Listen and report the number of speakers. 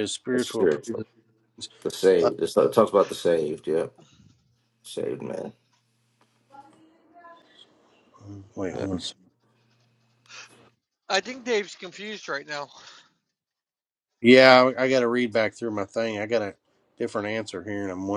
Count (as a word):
three